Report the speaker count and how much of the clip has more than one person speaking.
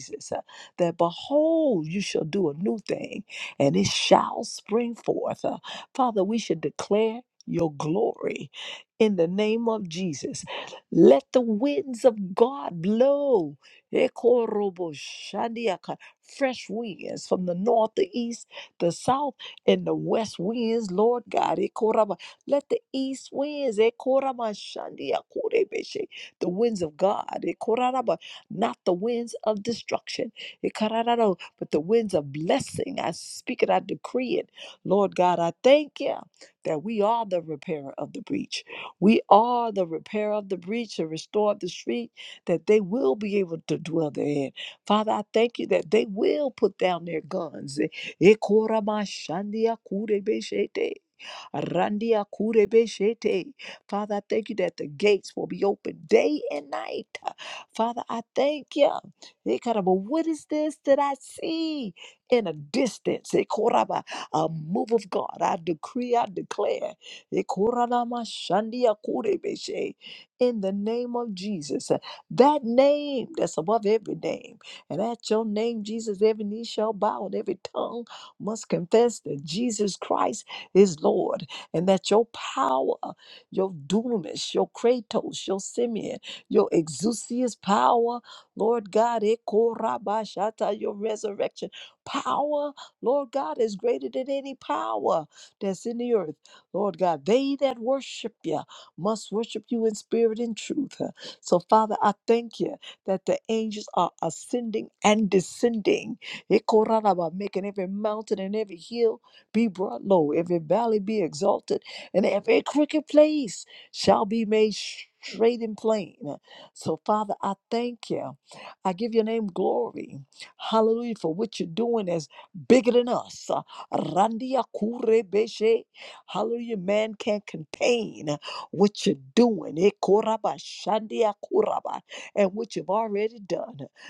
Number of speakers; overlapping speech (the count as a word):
one, no overlap